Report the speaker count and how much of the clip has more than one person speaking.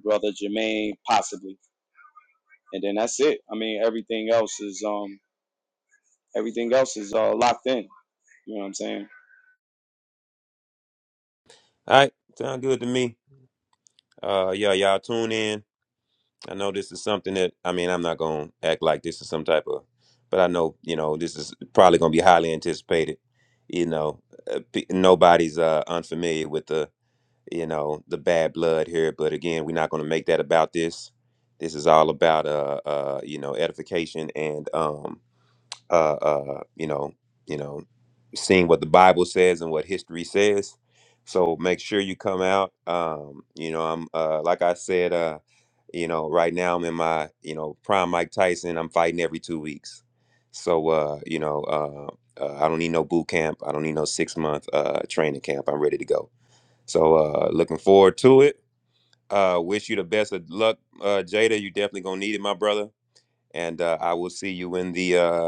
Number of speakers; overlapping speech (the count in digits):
2, no overlap